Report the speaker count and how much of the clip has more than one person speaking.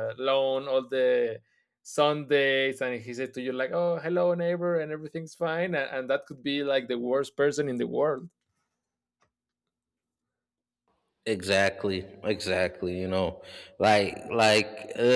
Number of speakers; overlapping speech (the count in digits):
2, no overlap